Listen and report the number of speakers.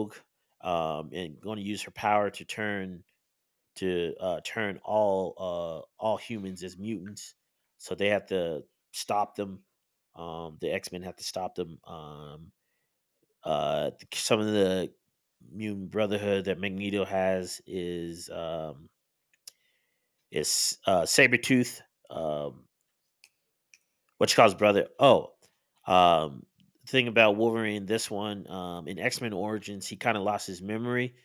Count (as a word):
one